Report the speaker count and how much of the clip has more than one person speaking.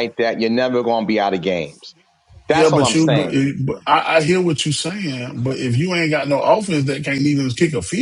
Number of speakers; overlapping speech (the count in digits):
2, about 10%